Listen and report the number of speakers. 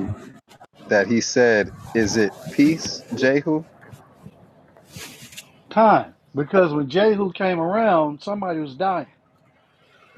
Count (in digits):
2